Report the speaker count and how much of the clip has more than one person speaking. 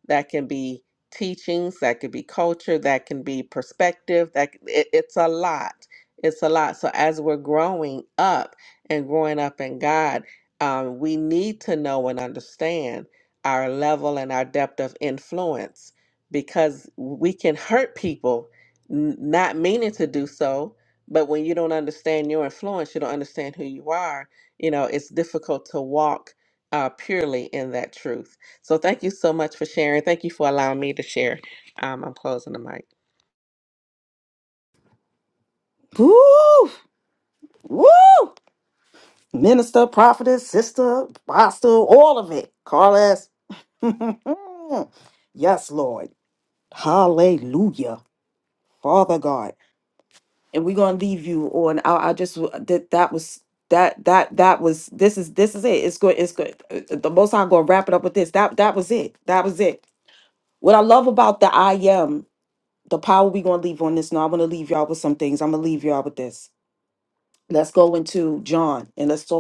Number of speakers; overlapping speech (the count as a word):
two, no overlap